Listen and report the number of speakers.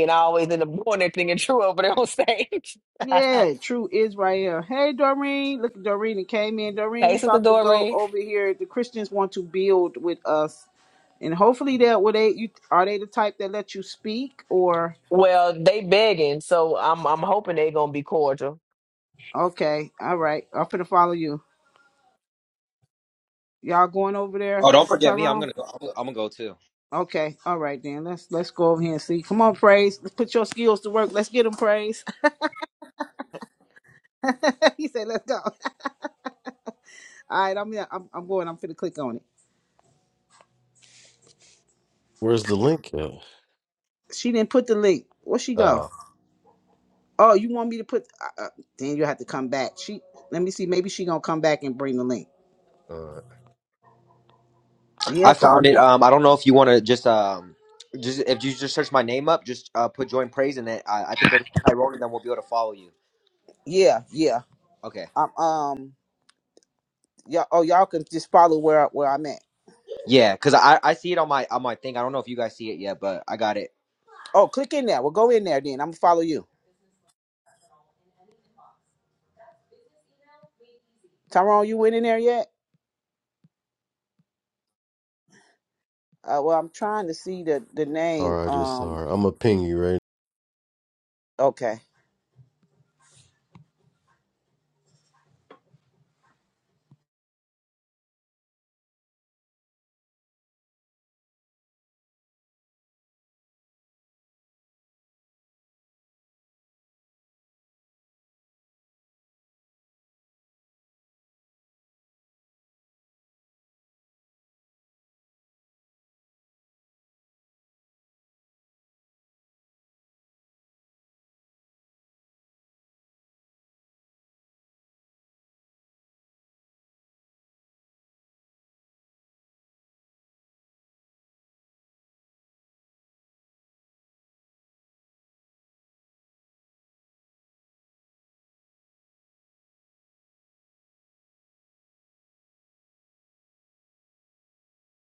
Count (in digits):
4